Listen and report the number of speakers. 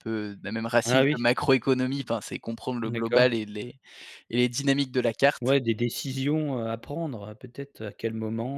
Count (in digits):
2